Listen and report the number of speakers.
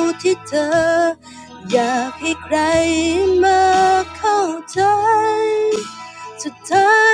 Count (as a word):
one